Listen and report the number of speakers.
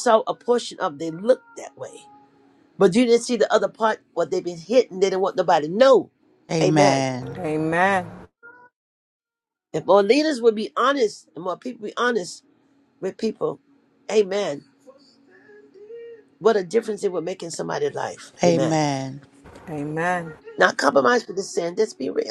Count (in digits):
3